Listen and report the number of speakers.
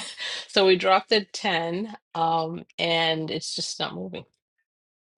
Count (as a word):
one